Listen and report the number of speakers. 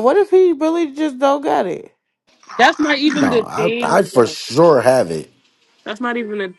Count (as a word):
three